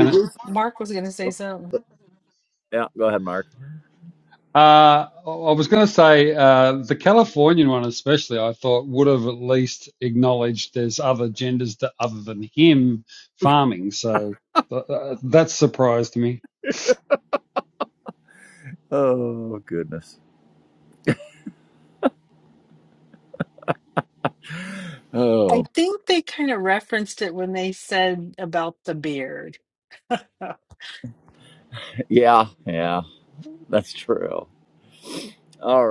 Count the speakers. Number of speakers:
three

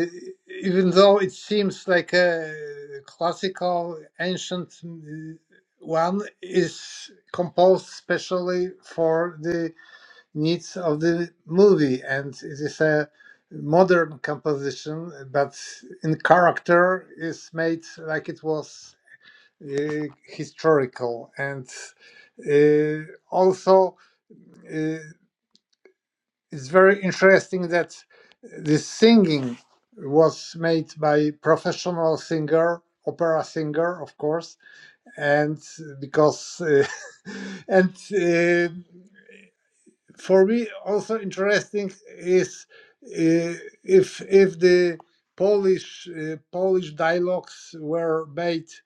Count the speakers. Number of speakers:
one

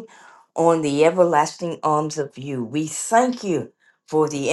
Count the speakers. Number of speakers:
one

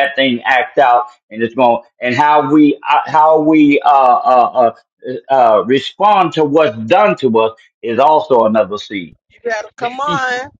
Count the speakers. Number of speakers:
two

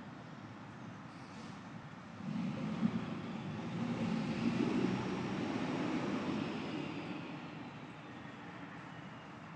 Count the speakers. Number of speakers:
zero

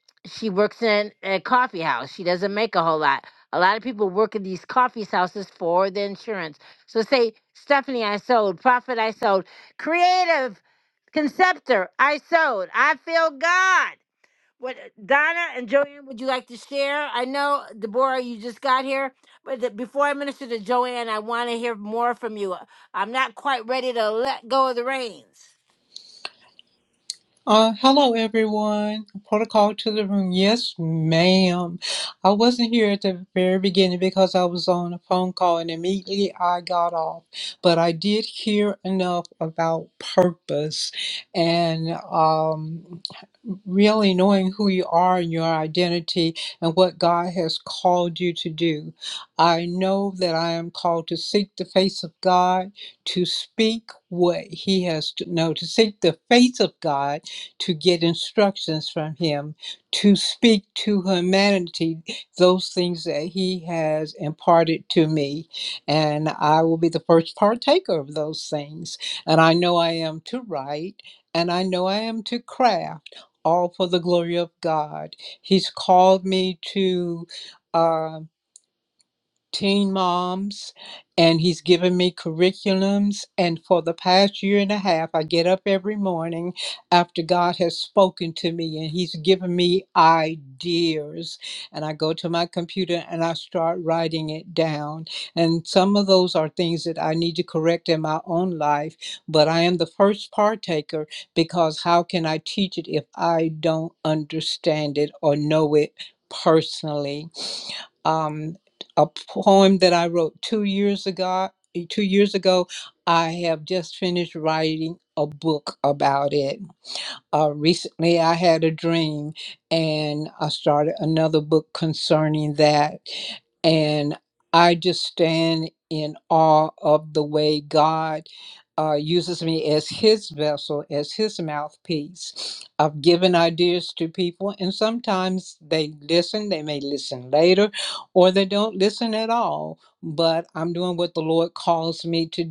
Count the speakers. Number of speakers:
two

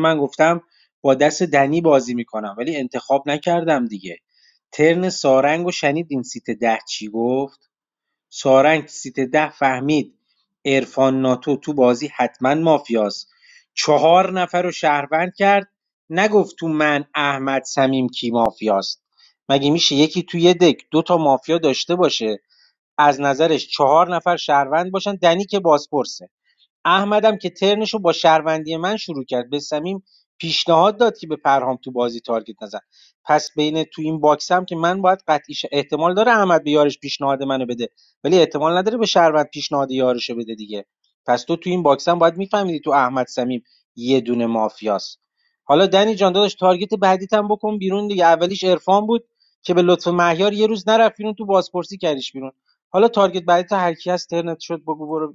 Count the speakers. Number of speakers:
one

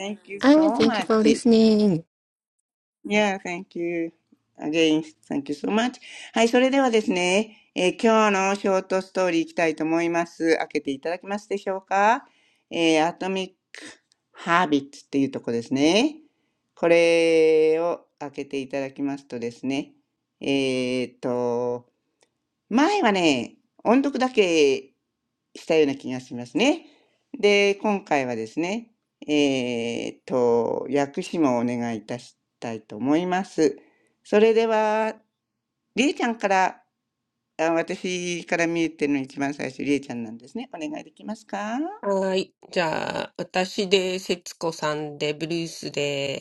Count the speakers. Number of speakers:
three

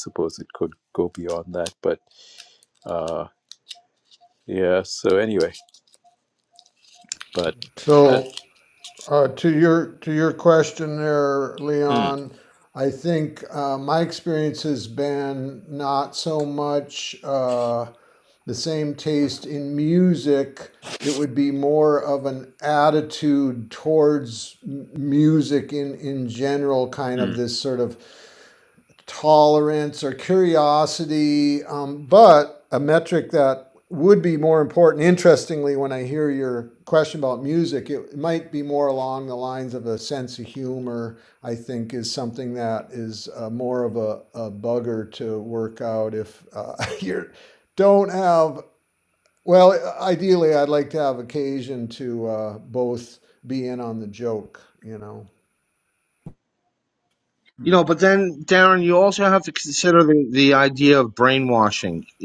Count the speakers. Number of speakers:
three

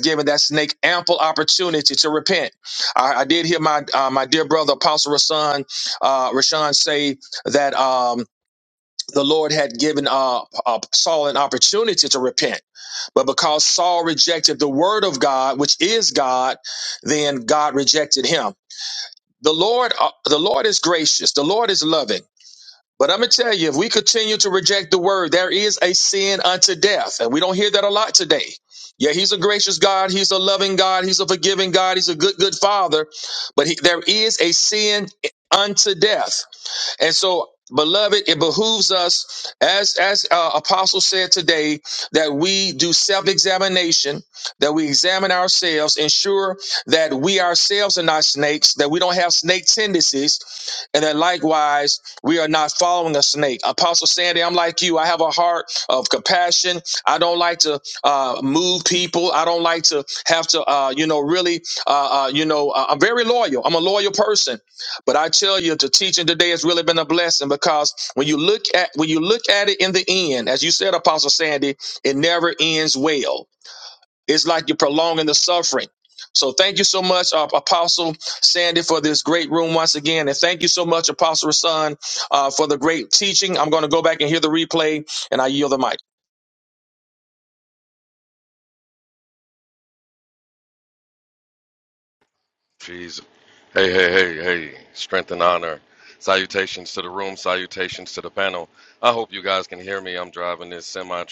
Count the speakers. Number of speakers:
two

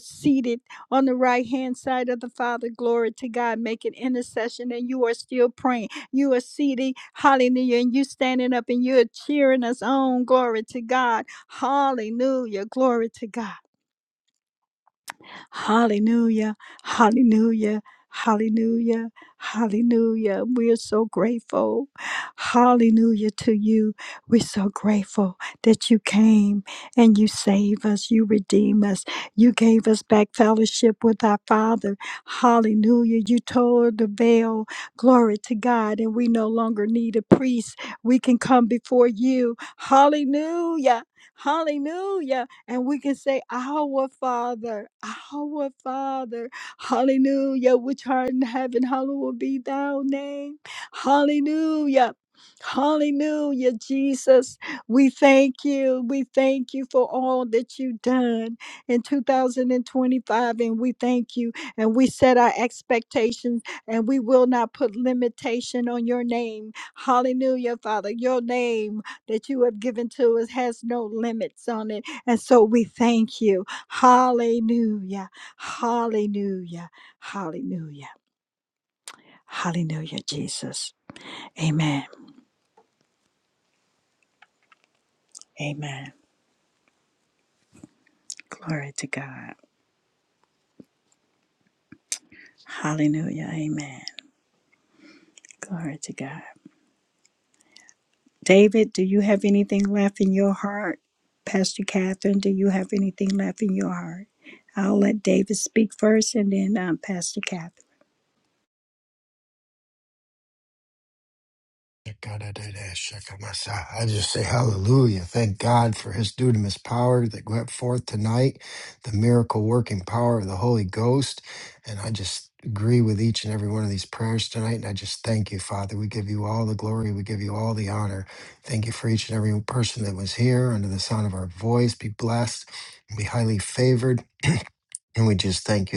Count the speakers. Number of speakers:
two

